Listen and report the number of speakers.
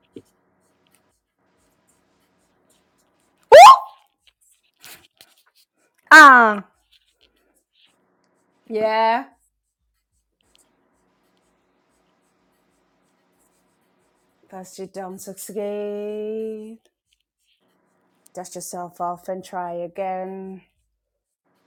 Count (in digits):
1